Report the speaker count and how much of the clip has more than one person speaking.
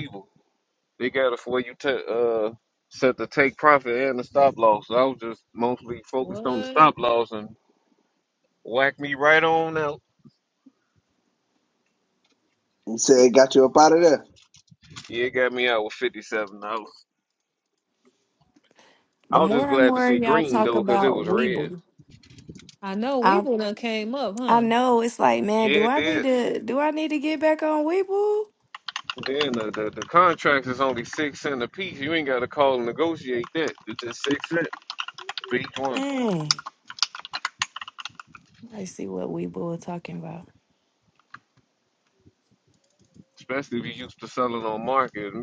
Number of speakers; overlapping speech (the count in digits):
4, about 9%